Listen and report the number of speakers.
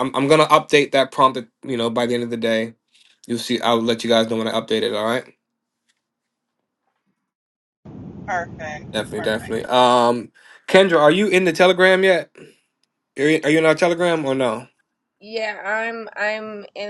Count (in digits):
3